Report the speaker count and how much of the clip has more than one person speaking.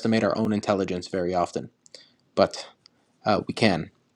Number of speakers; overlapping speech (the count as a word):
one, no overlap